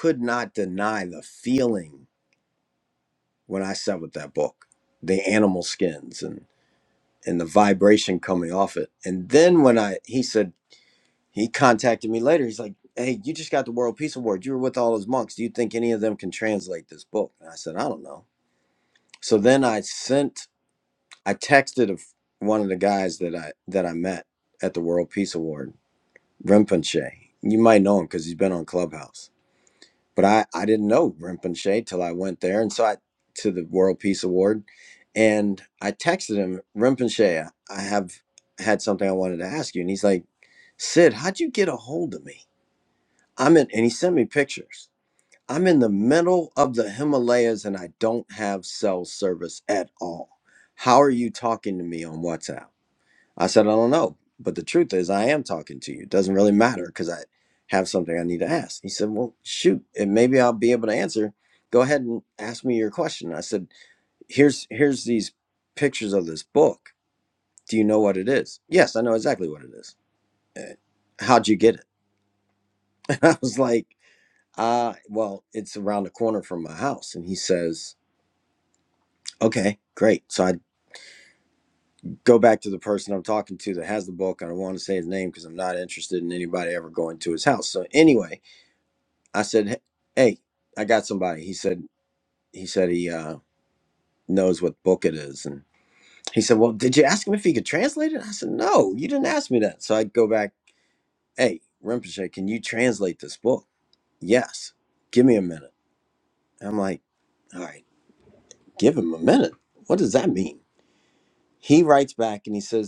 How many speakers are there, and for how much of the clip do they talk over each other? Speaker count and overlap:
1, no overlap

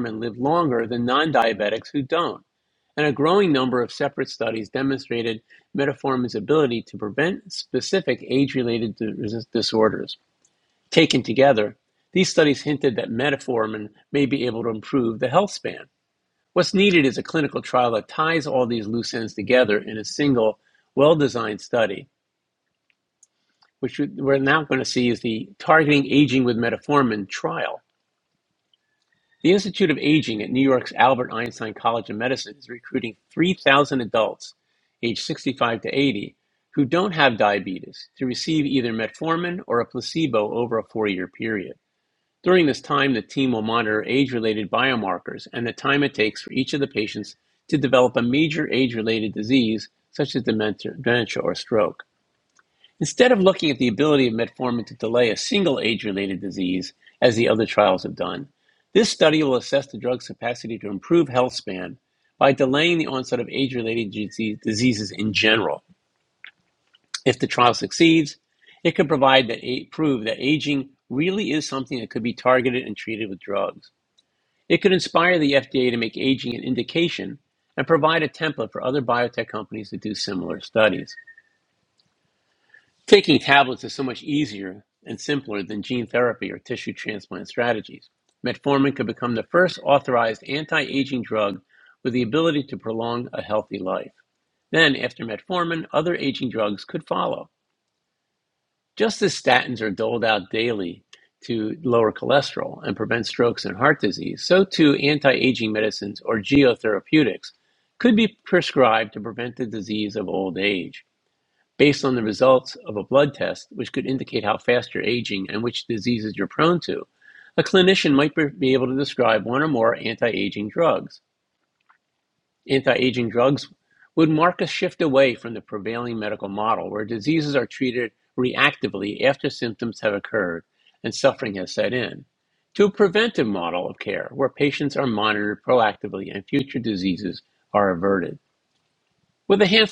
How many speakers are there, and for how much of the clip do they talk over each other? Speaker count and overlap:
1, no overlap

